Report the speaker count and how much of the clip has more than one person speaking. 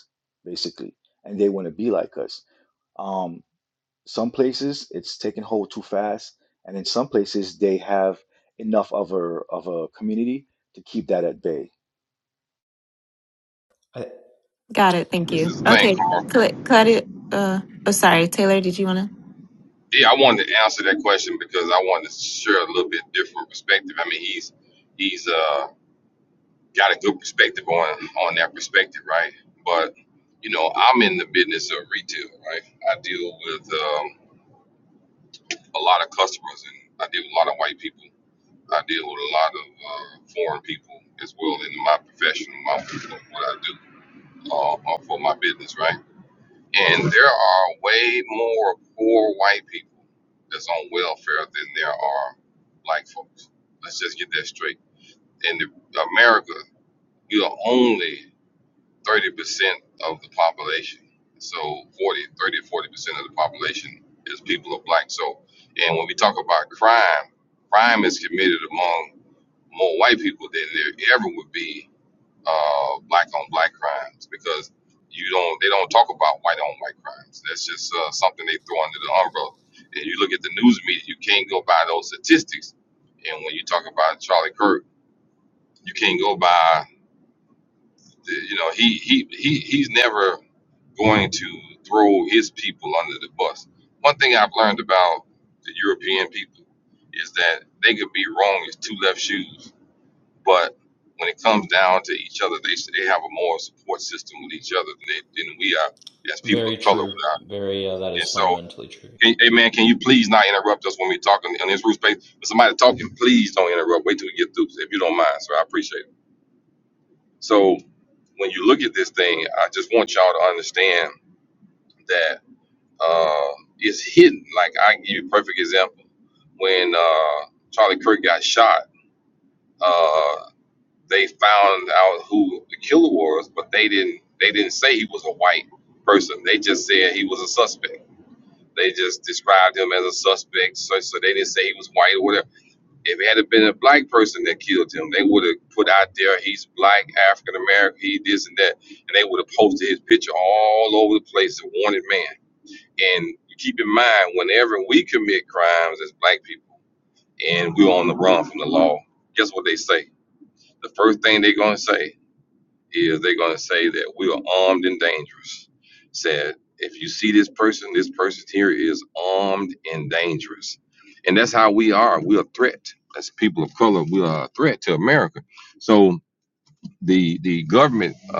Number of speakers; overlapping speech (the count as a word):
four, about 1%